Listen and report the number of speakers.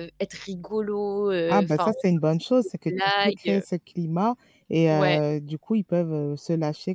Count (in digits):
2